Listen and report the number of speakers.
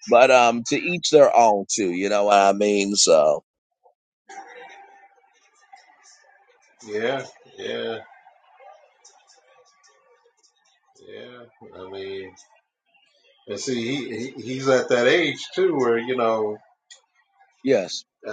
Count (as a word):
two